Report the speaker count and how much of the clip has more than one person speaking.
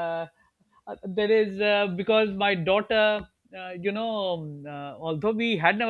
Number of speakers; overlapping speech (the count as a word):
one, no overlap